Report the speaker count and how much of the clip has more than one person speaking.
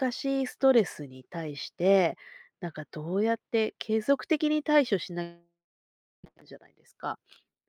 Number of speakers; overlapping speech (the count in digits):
1, no overlap